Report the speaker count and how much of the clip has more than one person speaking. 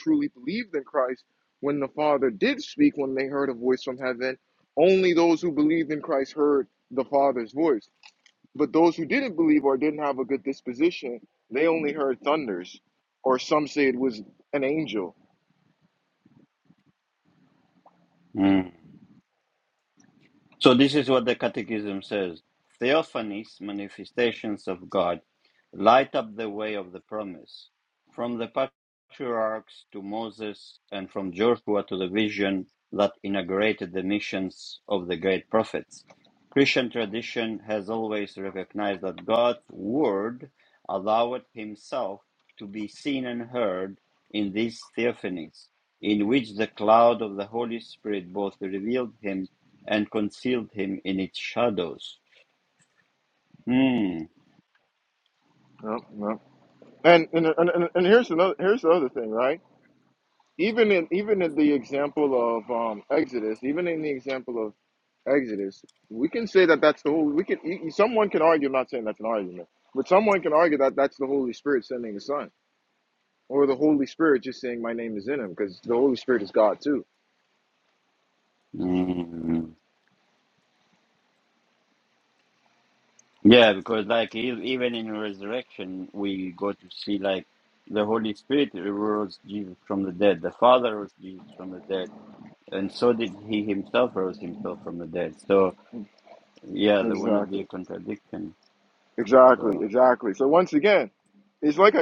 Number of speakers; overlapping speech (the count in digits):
2, about 1%